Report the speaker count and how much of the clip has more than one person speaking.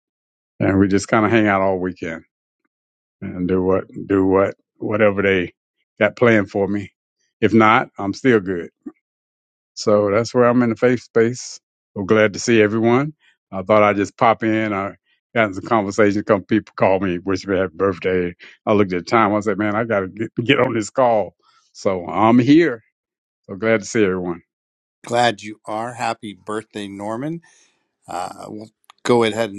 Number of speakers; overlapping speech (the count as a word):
two, no overlap